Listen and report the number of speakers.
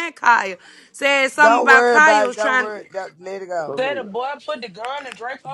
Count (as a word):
three